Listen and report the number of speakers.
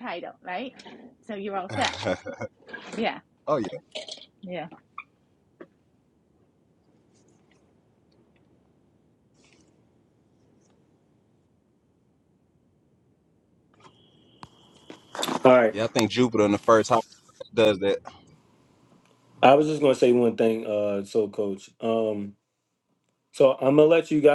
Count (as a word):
three